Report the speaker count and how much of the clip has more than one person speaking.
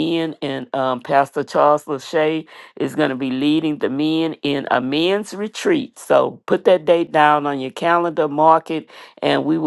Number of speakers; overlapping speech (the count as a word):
one, no overlap